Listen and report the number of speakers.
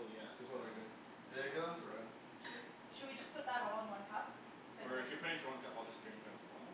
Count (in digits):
3